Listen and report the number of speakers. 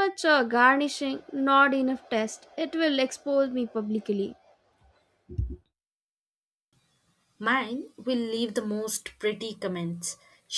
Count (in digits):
2